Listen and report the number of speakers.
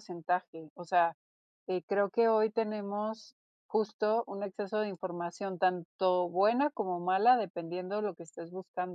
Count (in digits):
1